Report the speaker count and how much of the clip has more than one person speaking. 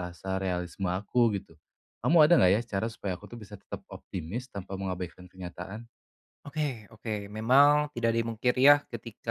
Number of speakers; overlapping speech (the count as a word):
two, no overlap